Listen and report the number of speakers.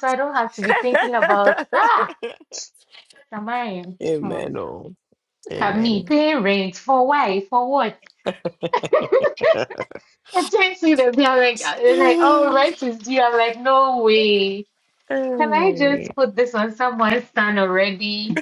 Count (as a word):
two